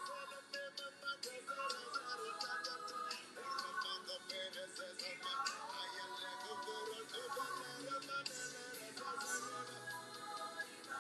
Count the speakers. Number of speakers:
zero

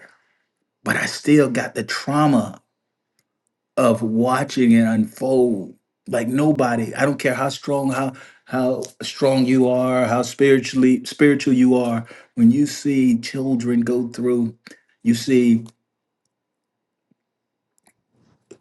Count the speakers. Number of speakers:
one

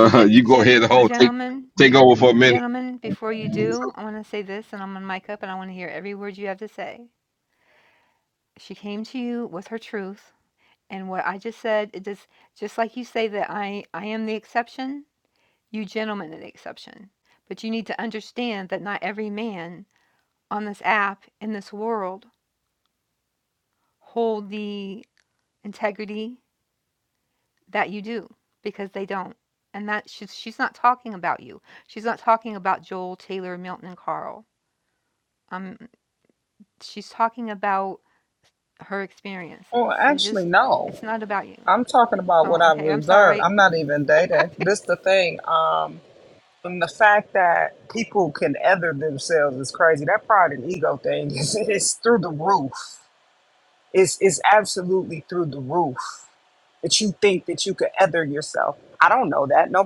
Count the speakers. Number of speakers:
three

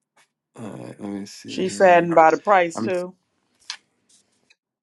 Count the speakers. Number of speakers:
two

